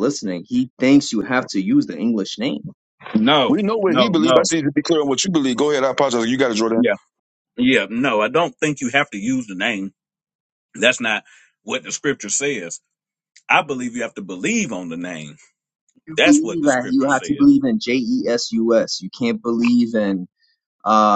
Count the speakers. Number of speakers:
3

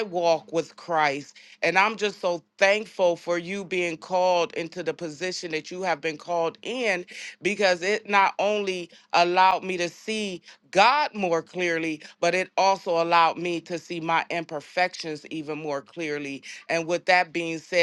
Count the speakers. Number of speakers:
1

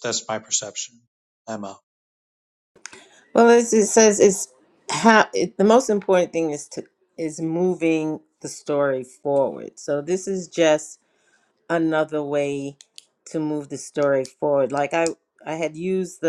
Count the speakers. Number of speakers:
2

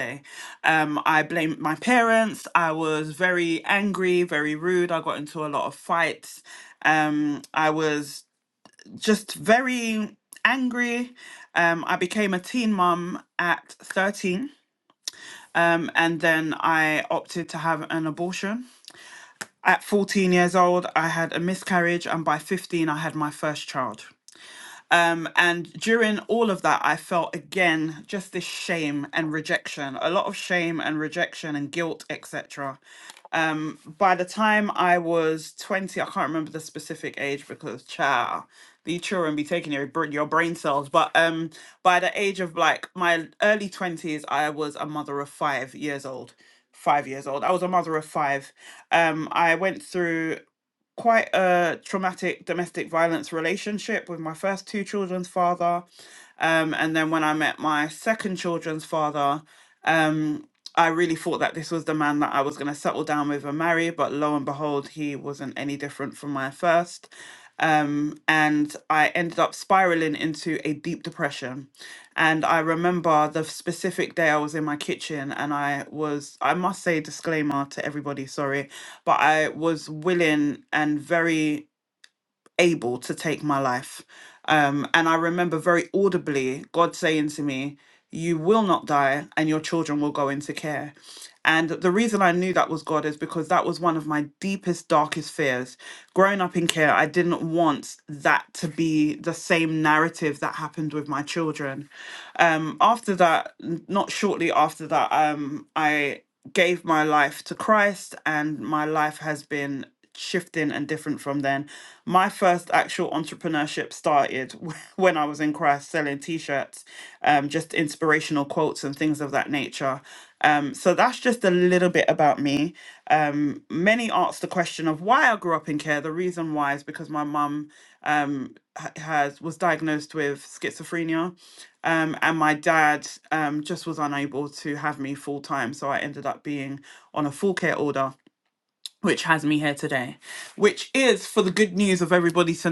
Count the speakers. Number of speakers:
1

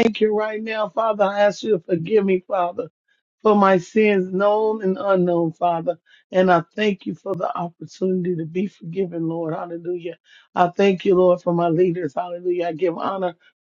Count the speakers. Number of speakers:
1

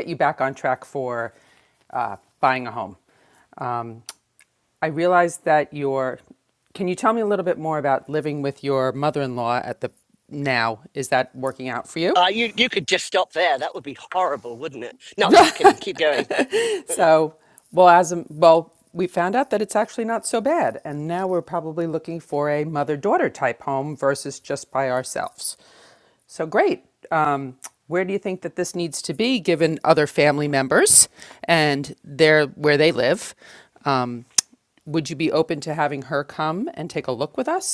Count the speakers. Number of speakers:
2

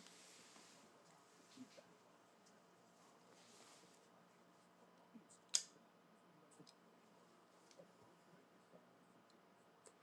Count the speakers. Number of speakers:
0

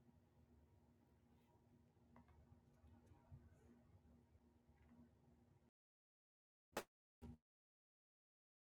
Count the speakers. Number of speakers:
0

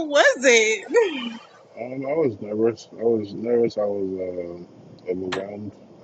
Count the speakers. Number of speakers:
2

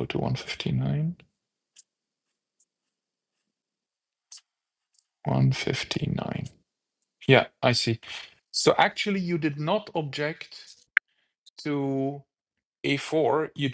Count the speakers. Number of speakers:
1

